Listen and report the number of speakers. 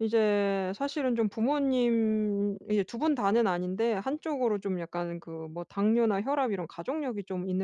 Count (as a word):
one